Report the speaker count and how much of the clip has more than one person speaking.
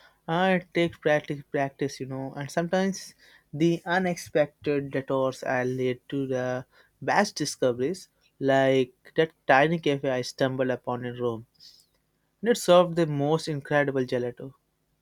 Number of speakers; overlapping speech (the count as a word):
one, no overlap